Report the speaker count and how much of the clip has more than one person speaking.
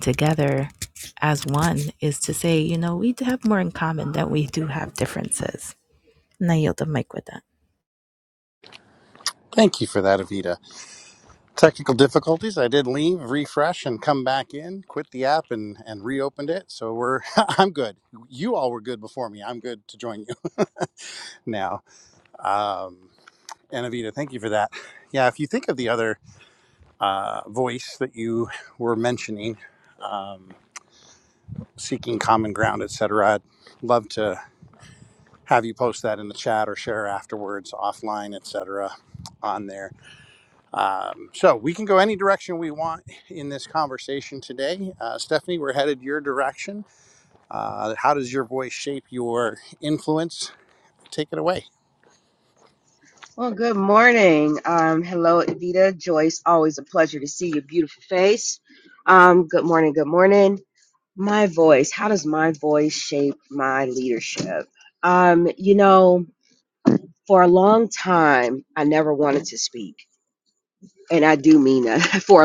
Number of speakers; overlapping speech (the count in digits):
3, no overlap